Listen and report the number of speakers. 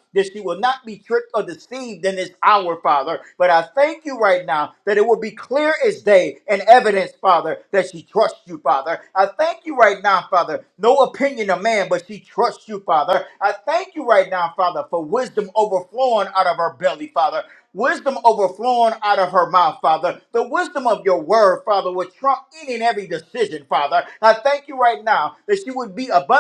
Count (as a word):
one